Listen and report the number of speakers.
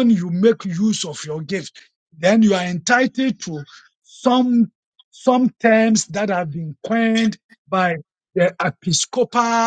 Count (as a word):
one